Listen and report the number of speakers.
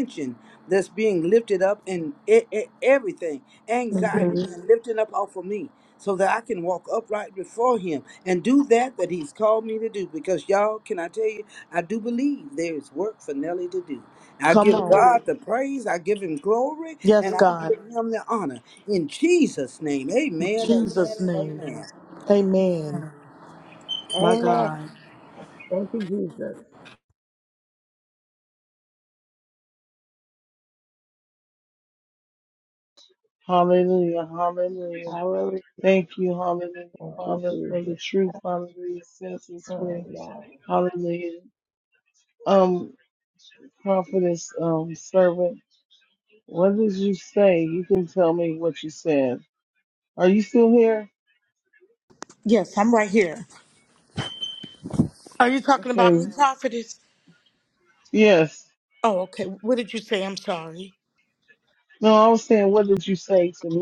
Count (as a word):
four